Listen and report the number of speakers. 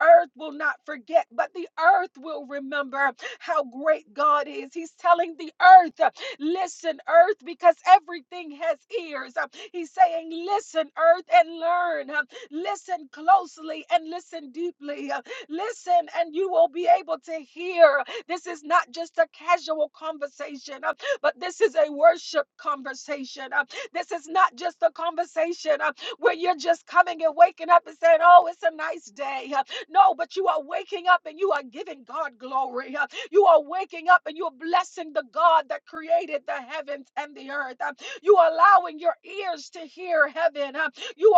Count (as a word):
one